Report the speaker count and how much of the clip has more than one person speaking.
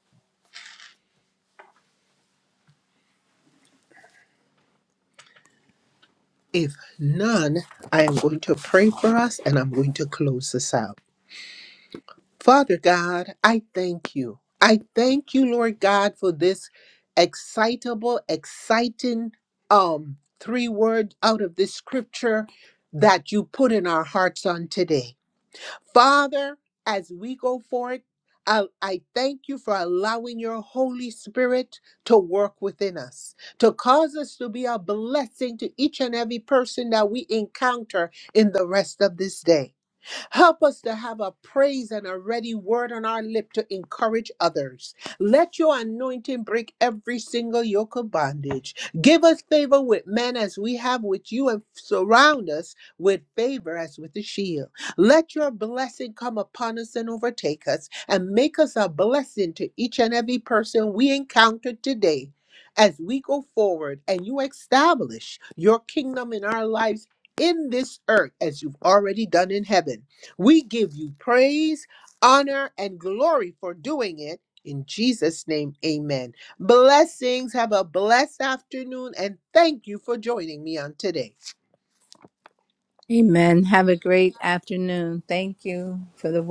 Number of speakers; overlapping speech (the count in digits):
2, no overlap